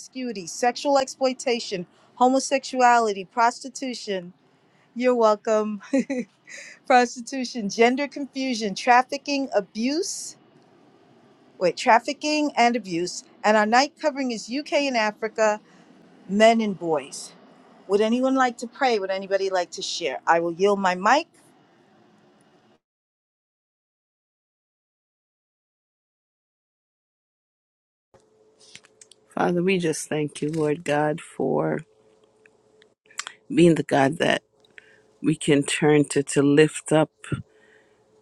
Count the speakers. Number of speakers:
two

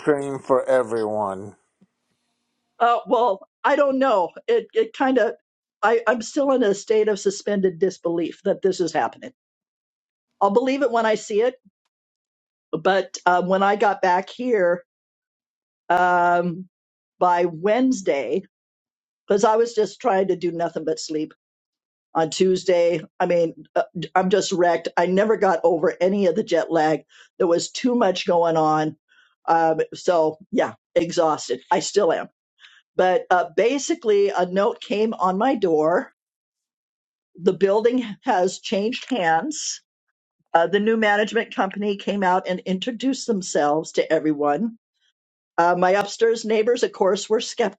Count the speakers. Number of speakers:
two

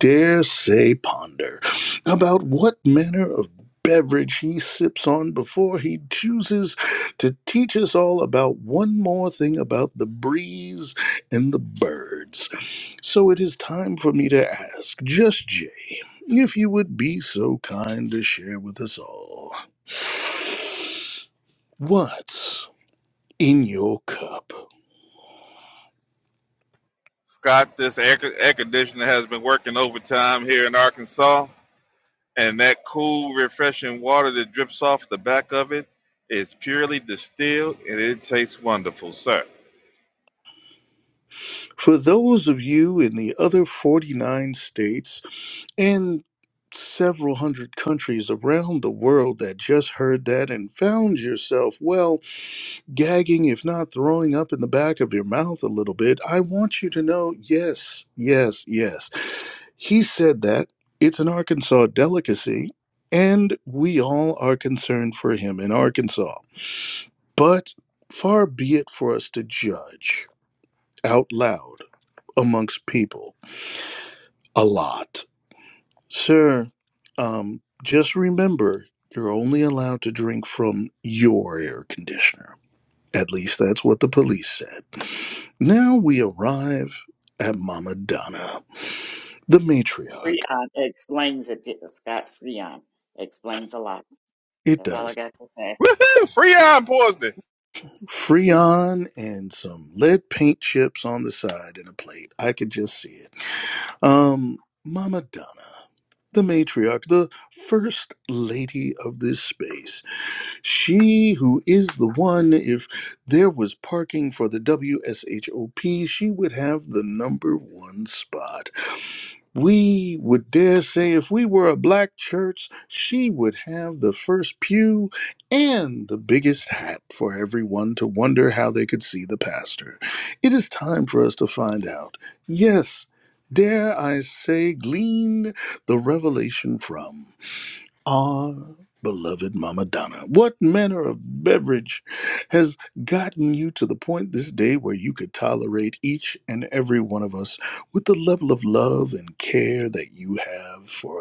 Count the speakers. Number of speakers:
three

